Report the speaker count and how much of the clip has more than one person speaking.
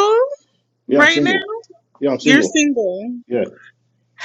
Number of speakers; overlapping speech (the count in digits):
2, about 19%